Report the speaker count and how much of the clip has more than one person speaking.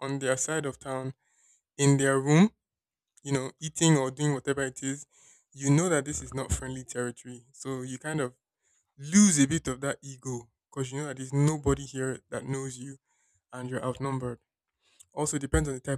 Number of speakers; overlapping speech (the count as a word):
one, no overlap